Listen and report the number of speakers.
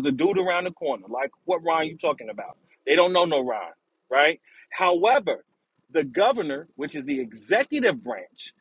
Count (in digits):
1